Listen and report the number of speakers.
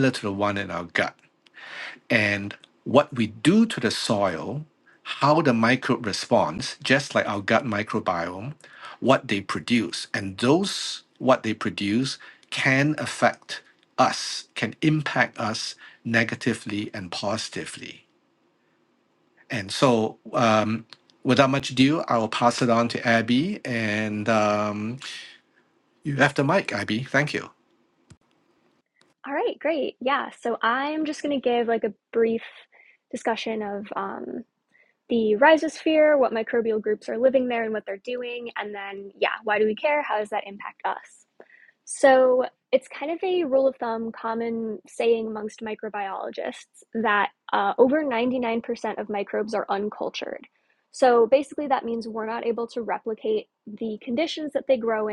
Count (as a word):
two